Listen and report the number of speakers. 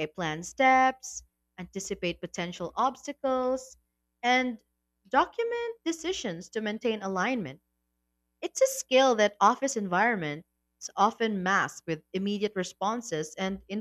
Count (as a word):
one